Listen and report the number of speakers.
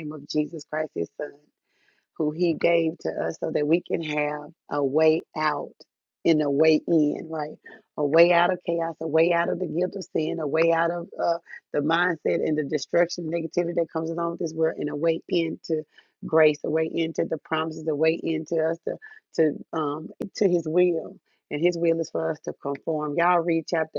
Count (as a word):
one